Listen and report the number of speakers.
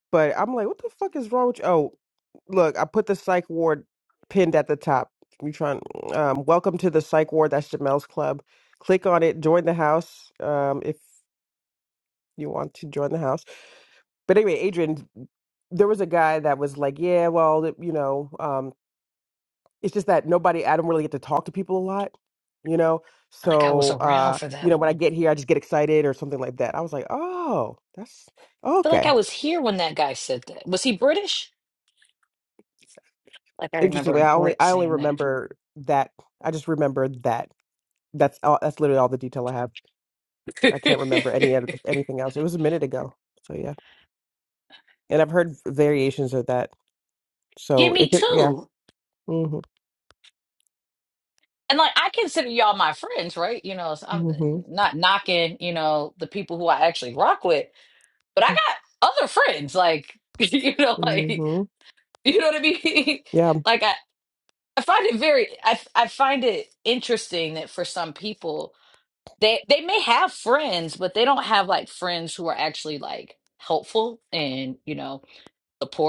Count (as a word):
two